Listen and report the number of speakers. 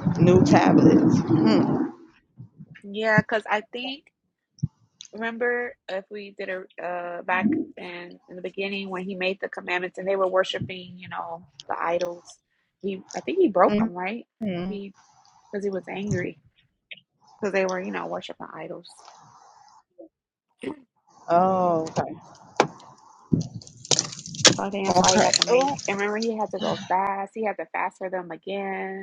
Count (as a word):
two